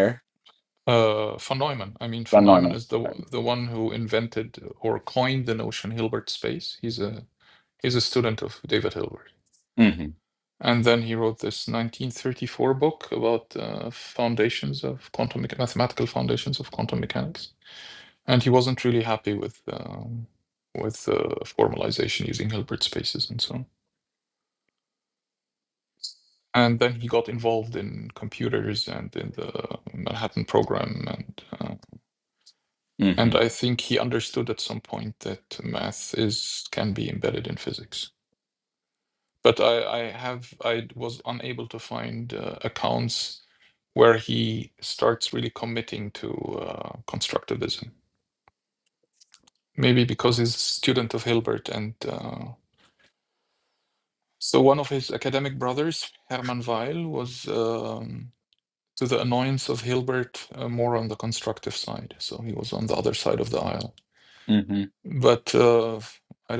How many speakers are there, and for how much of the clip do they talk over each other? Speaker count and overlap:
2, about 1%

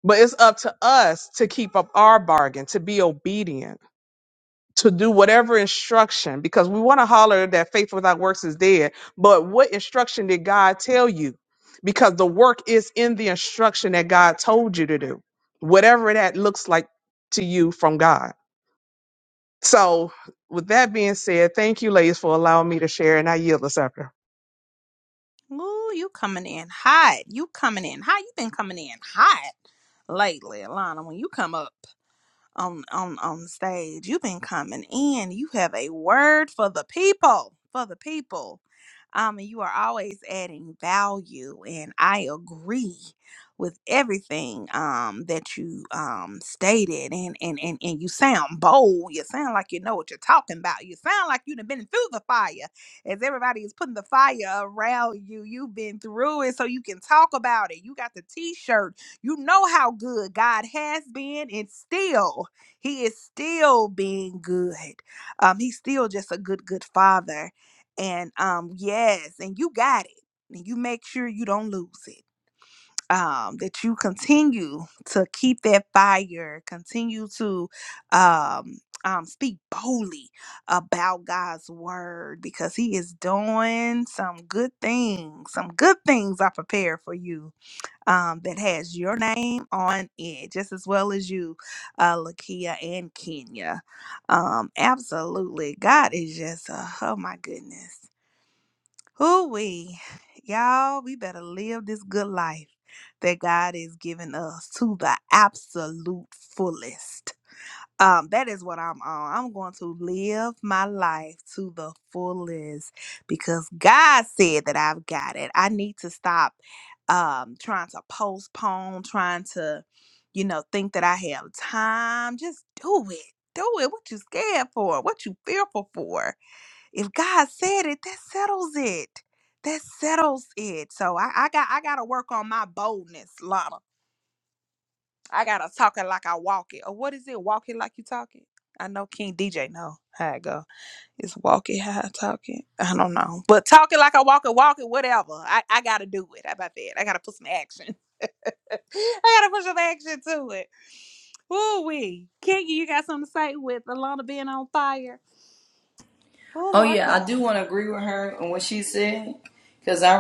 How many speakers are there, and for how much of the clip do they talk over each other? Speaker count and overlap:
3, under 1%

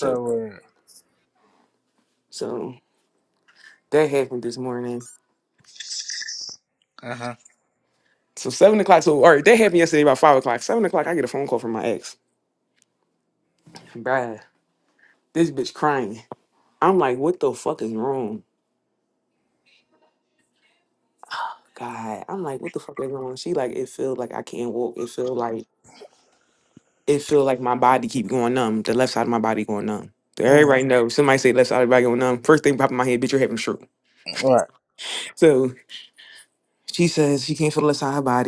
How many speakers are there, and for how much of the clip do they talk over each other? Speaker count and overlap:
2, about 1%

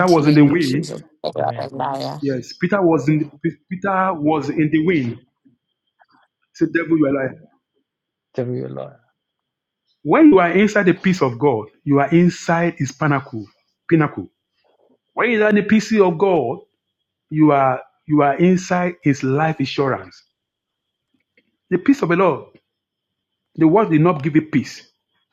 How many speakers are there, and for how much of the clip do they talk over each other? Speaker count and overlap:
3, about 5%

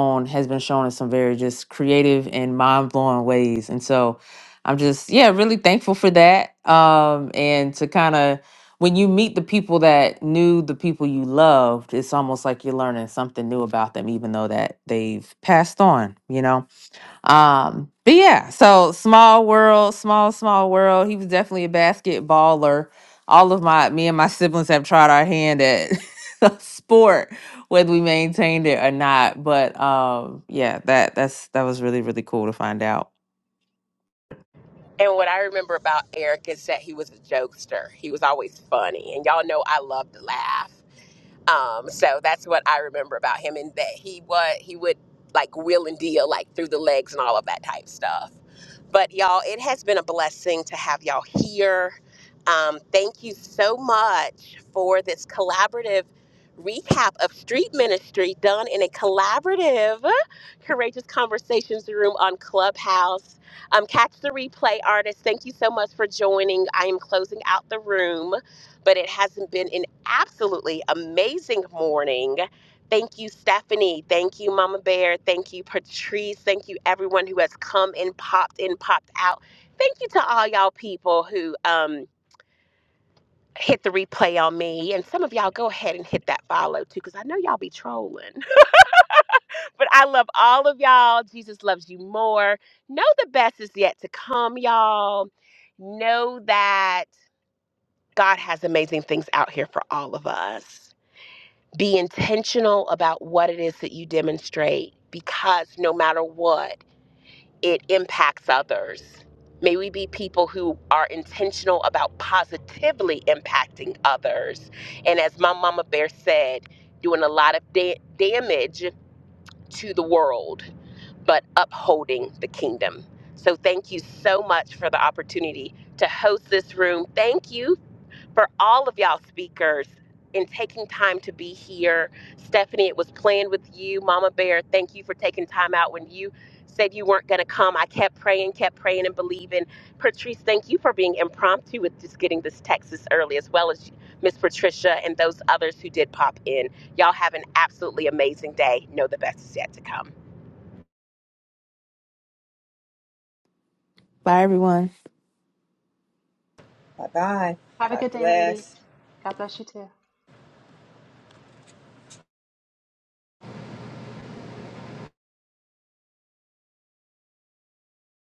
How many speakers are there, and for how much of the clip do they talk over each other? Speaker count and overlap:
4, under 1%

